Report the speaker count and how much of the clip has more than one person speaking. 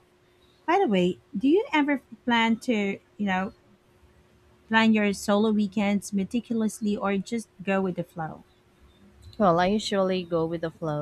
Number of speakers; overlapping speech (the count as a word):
two, no overlap